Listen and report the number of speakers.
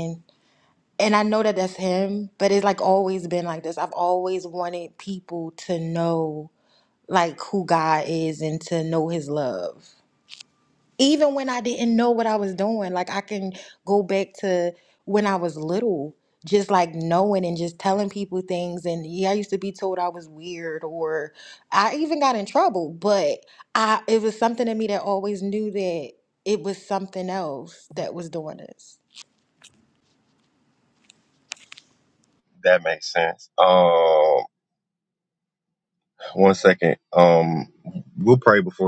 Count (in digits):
2